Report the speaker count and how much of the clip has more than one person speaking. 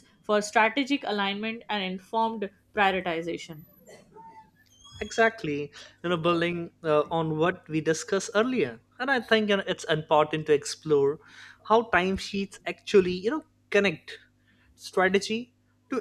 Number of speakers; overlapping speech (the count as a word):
two, no overlap